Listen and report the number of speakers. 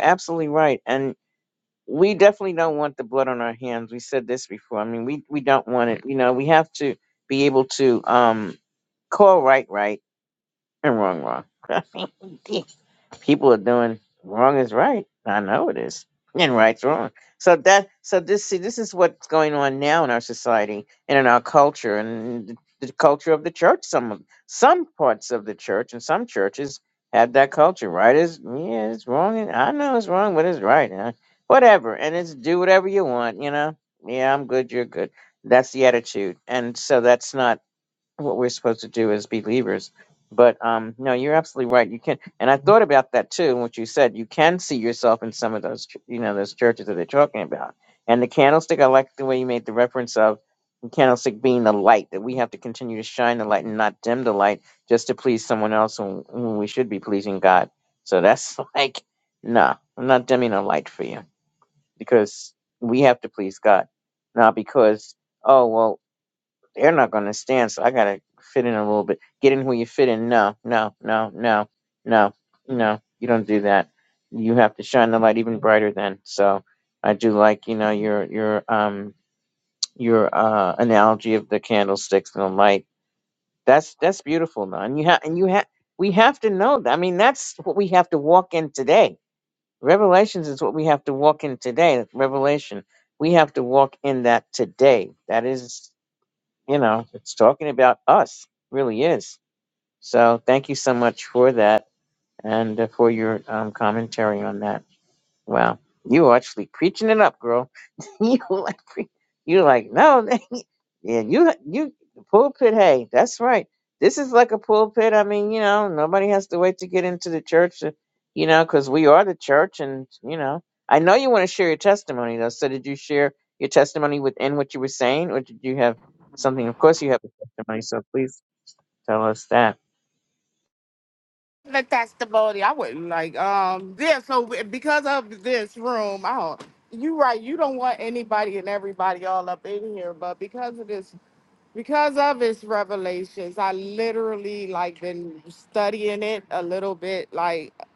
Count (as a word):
two